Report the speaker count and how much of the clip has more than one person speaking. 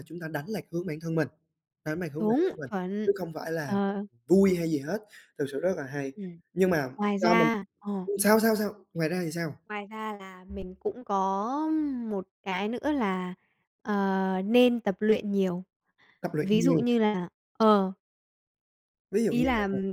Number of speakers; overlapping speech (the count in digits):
2, about 10%